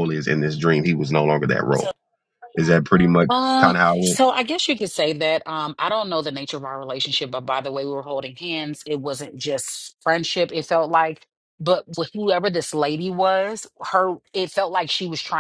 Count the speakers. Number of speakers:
2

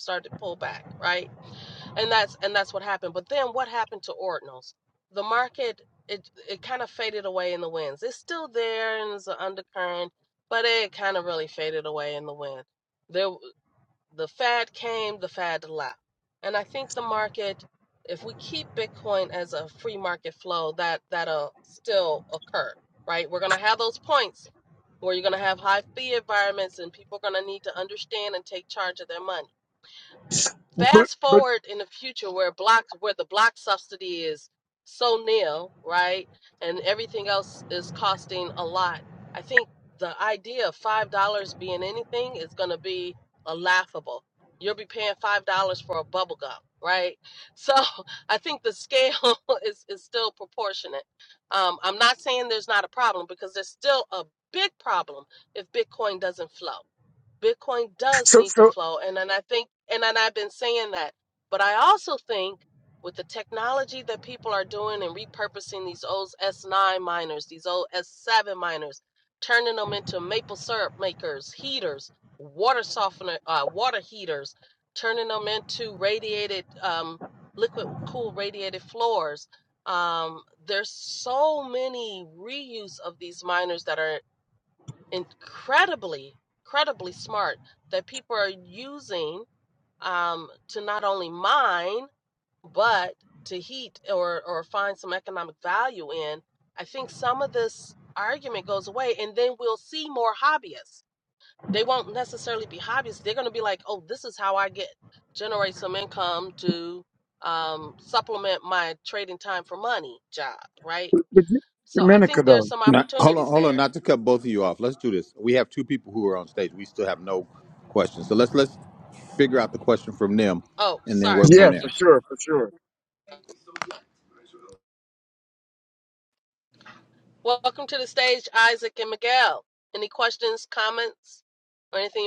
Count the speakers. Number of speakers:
3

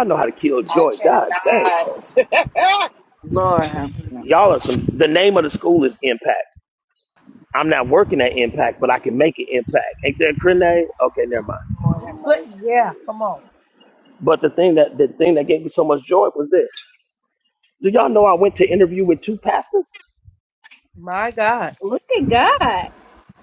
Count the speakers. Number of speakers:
4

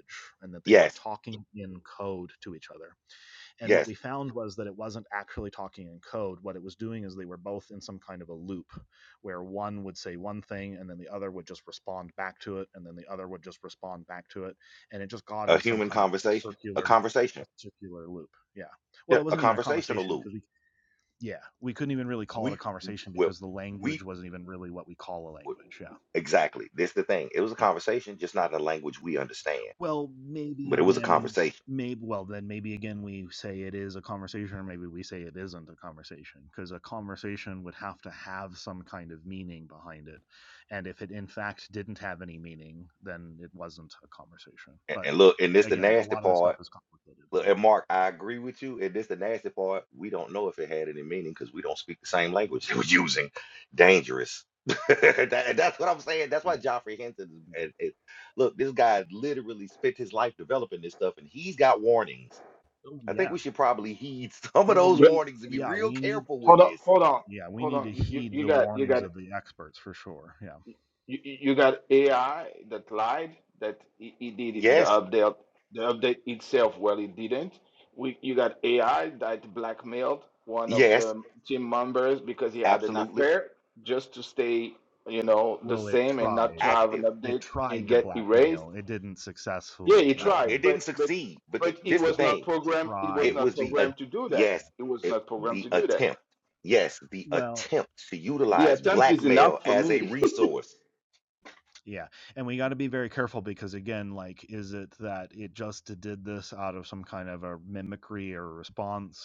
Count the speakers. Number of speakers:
3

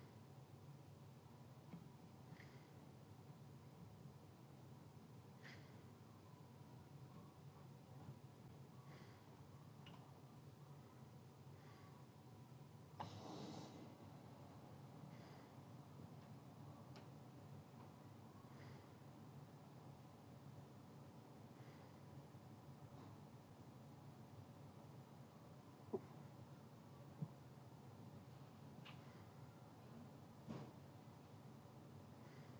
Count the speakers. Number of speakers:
0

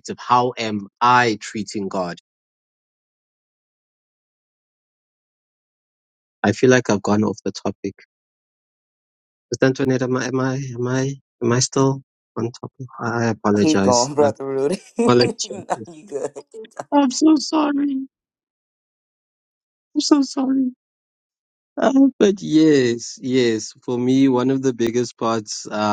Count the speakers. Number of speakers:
2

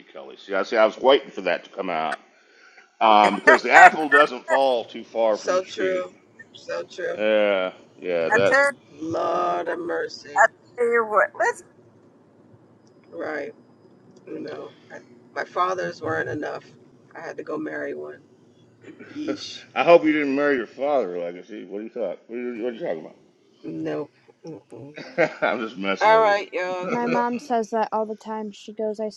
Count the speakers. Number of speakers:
4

